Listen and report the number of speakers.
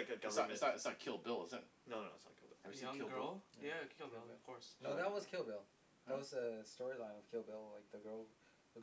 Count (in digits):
4